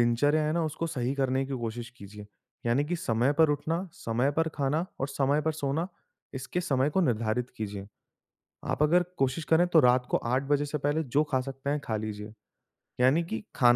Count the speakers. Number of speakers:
one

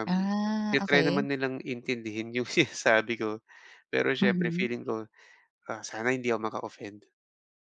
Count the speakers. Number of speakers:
two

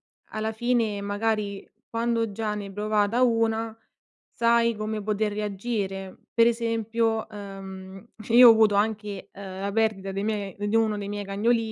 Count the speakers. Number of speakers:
one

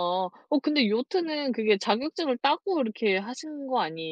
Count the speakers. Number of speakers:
one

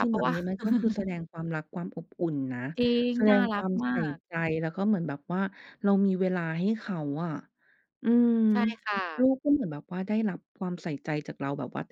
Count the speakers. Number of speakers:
two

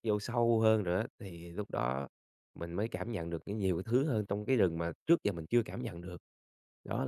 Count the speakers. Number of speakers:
one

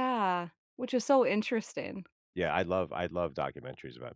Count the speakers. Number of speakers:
two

